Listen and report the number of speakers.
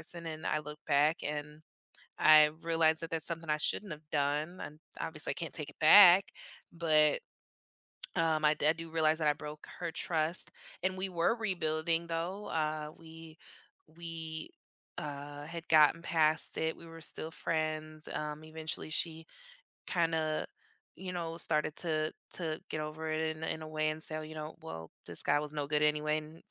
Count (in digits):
1